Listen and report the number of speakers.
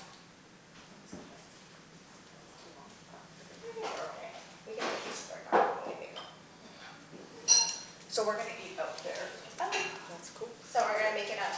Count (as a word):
two